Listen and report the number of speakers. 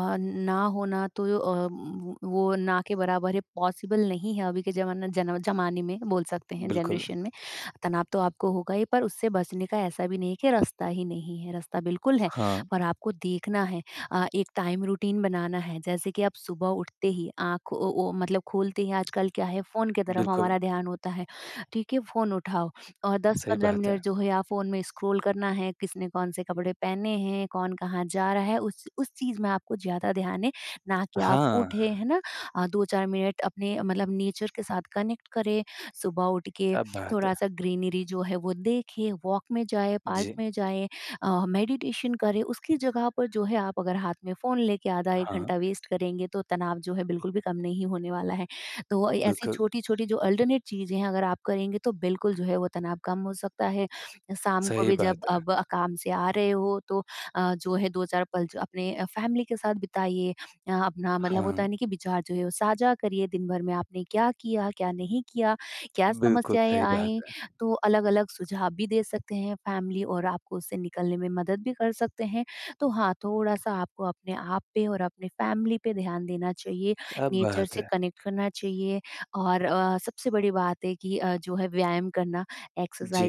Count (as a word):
two